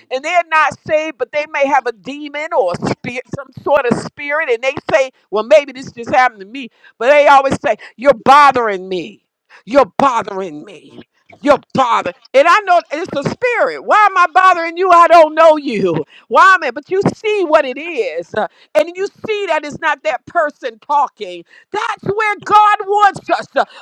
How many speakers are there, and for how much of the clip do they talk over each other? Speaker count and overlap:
one, no overlap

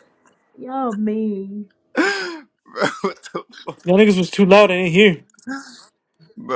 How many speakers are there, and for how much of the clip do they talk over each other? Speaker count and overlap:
three, no overlap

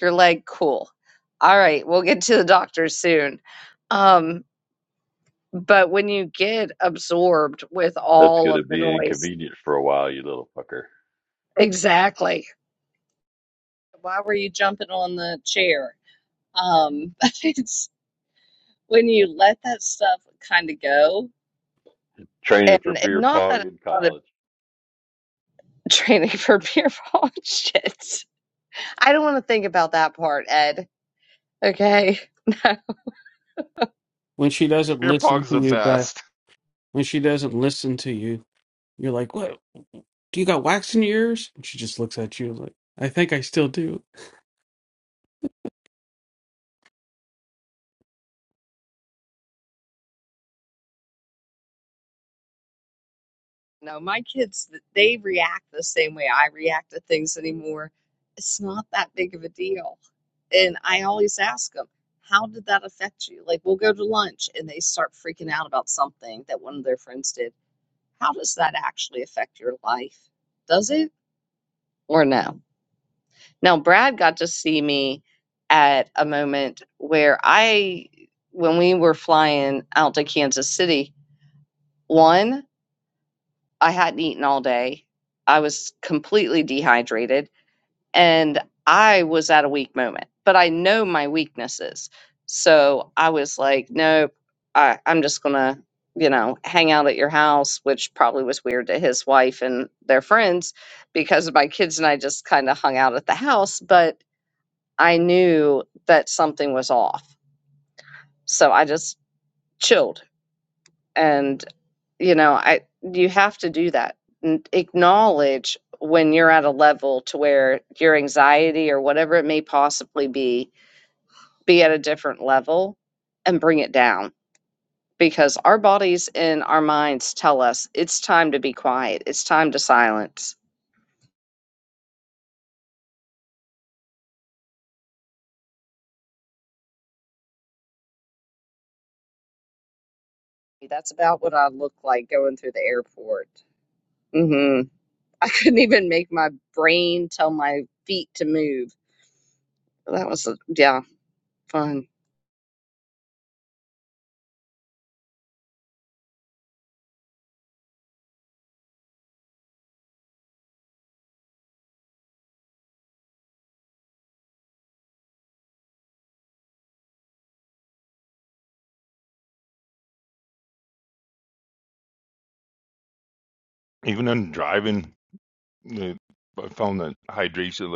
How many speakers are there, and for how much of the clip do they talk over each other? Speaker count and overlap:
four, about 2%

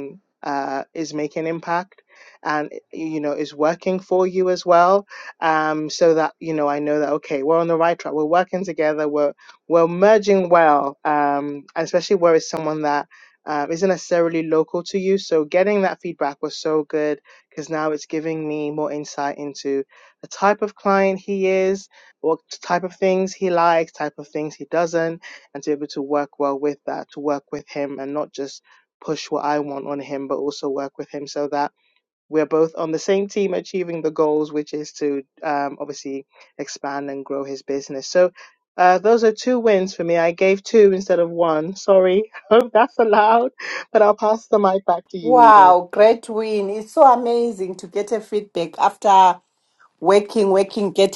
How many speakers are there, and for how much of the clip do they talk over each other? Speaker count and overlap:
two, about 1%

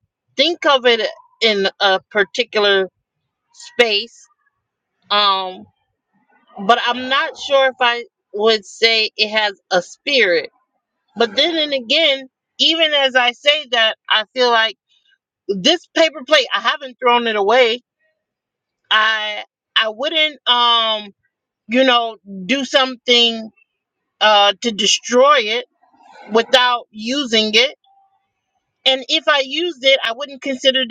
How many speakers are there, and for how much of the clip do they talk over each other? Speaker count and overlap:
one, no overlap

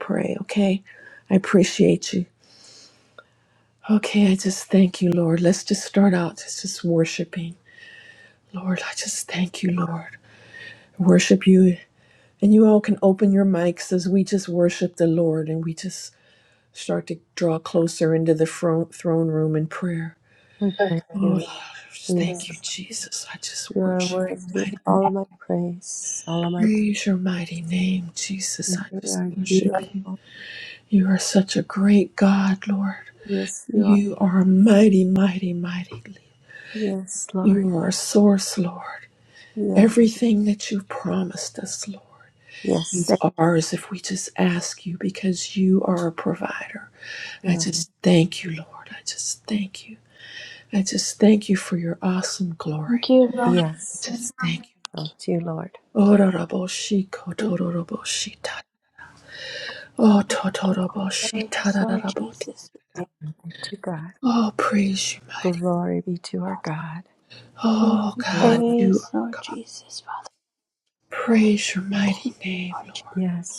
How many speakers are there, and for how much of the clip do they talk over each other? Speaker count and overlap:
three, about 13%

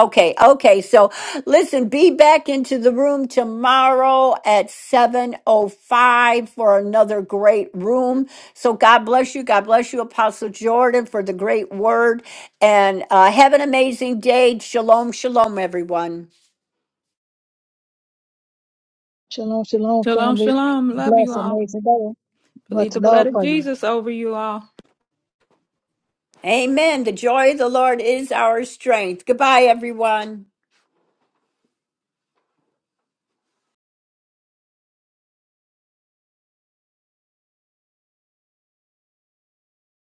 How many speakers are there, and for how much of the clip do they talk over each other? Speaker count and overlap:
three, about 5%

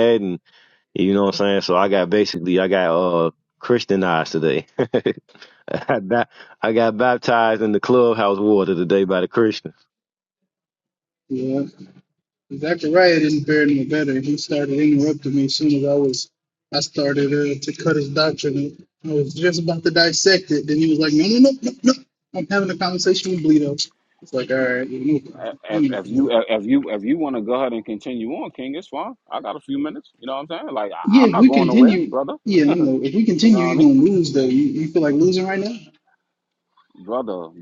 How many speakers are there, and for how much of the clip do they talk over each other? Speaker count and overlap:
three, about 6%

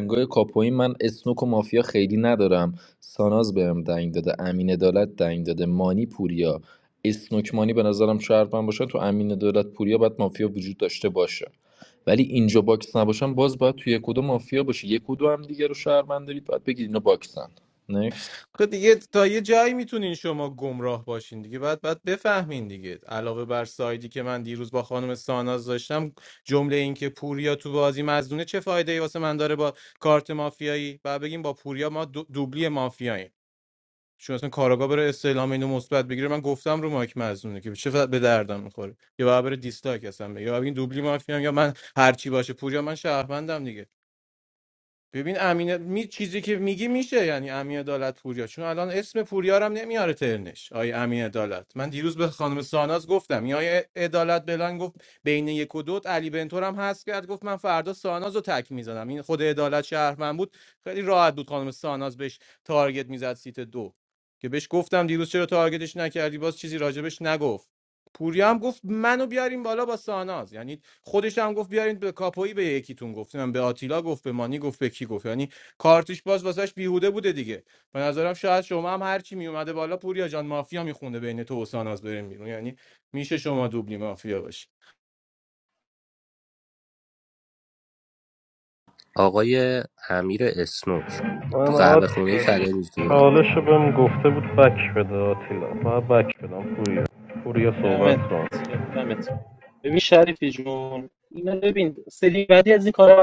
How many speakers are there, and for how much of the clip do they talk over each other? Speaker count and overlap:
five, about 2%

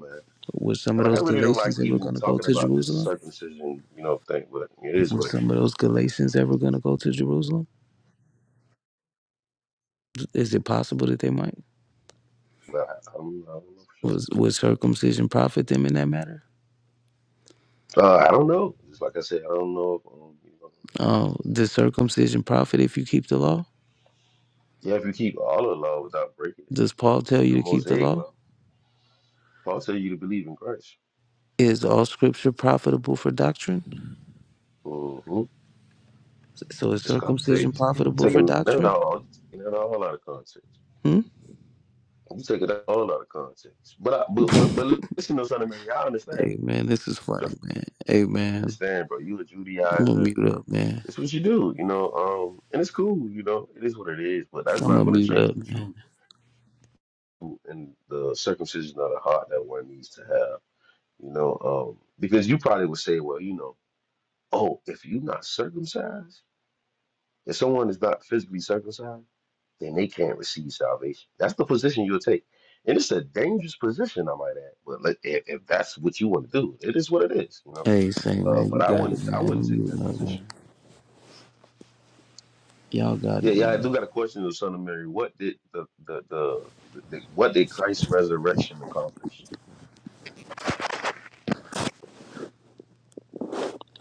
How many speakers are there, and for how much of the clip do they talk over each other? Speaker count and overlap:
two, about 10%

